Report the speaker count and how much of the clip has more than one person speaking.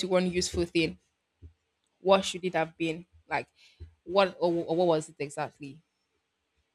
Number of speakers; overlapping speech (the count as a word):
one, no overlap